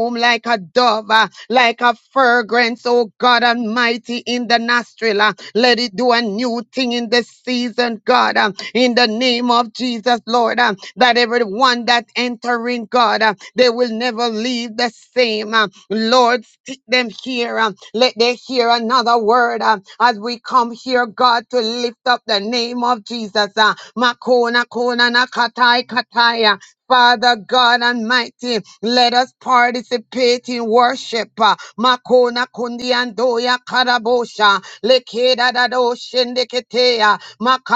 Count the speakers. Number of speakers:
one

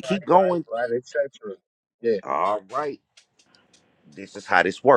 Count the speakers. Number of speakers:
two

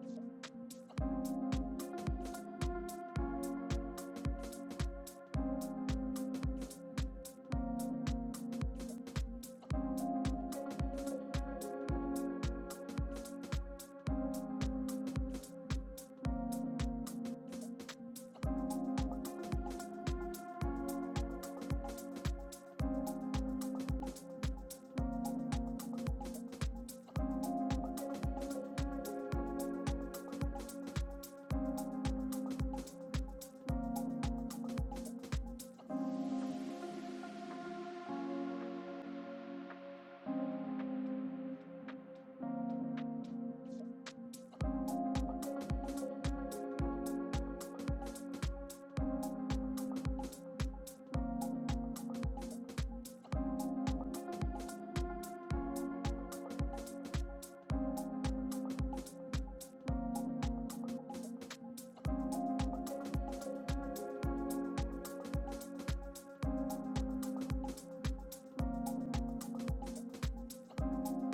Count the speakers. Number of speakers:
zero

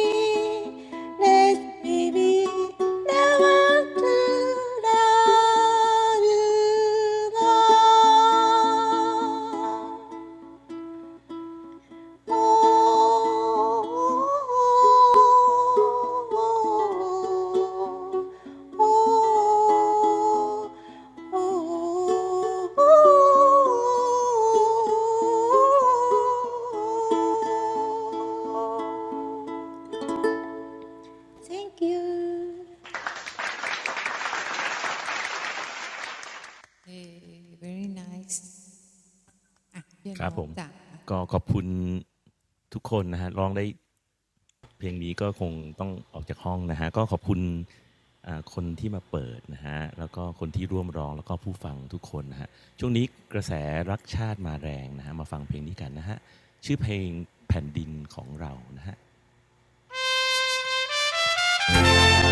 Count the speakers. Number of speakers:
three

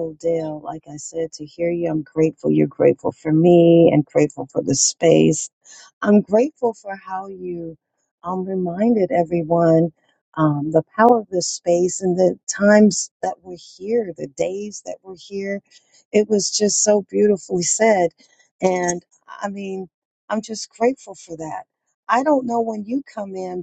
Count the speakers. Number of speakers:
one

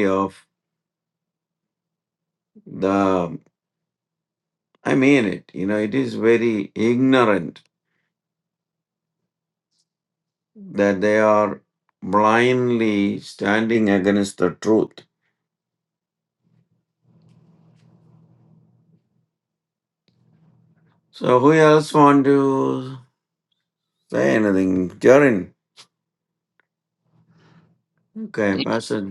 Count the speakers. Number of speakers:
one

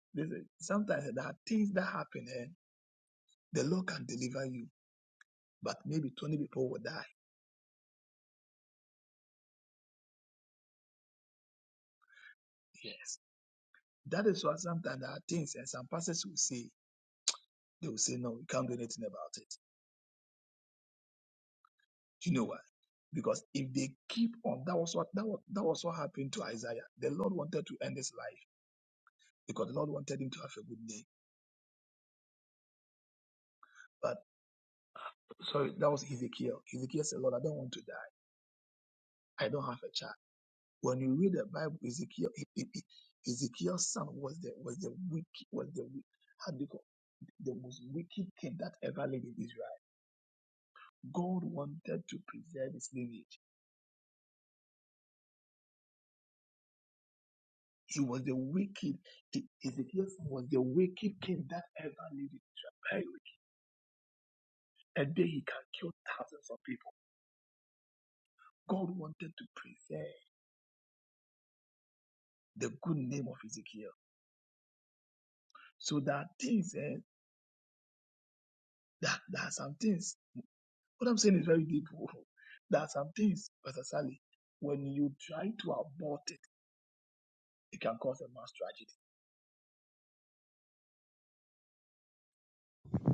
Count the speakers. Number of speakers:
one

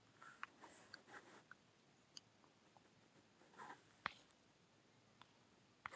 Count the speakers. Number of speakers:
zero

